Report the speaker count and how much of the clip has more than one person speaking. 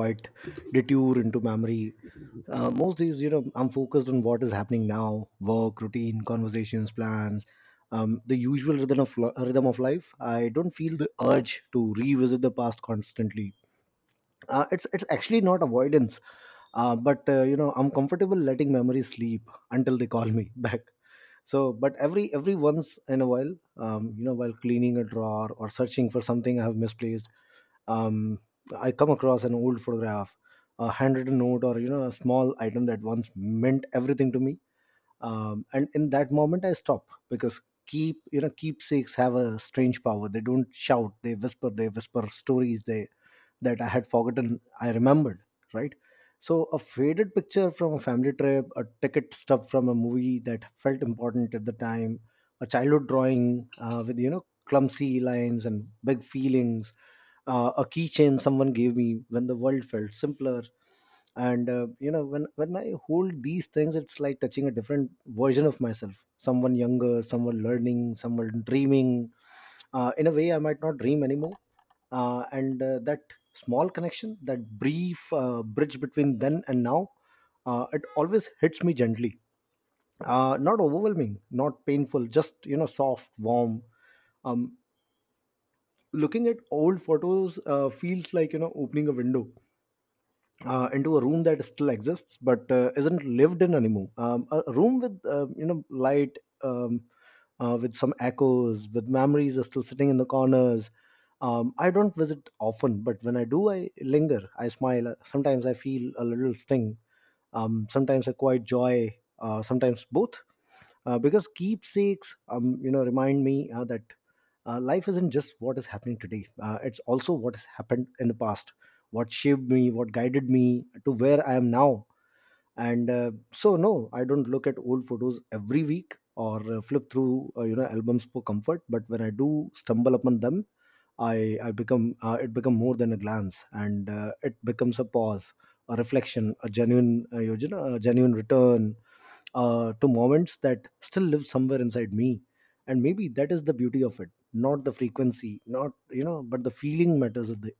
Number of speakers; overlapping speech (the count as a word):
one, no overlap